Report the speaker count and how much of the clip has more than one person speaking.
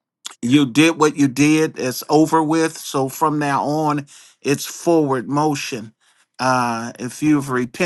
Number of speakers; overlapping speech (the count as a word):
one, no overlap